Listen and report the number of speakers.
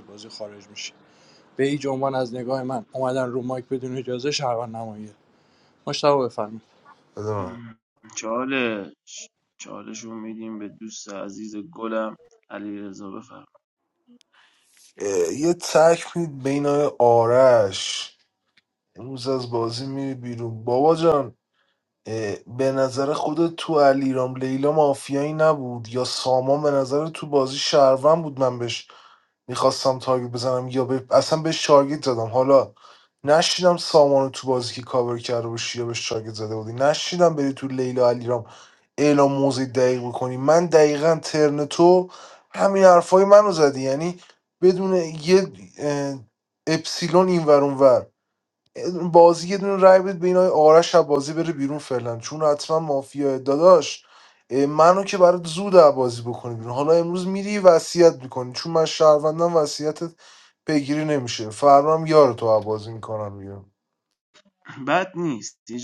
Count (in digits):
3